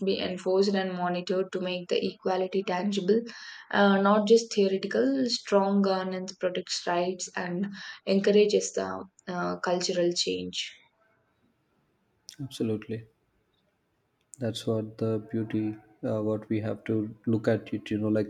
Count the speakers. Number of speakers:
two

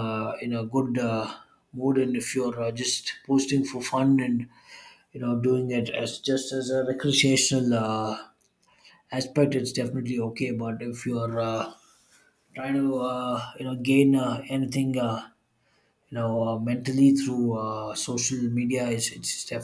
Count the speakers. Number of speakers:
one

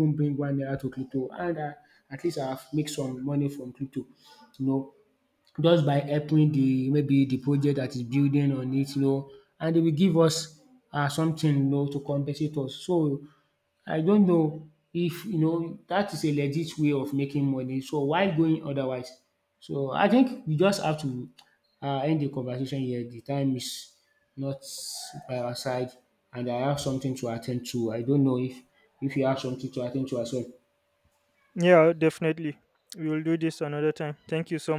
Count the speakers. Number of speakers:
two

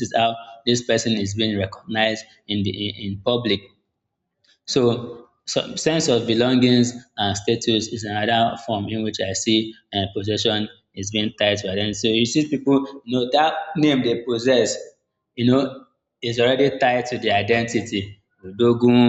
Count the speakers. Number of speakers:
one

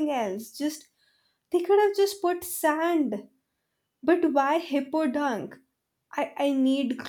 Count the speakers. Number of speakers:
one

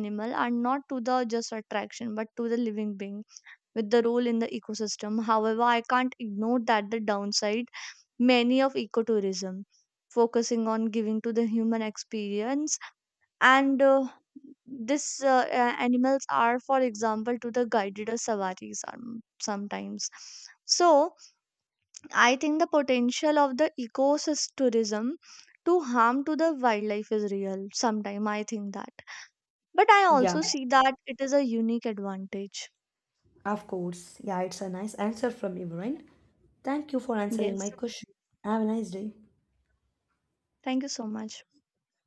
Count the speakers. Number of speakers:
two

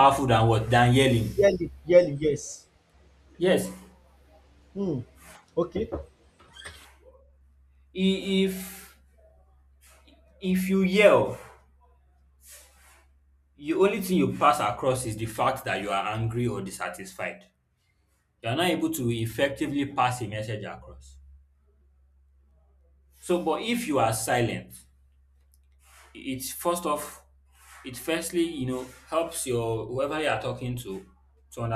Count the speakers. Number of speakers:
two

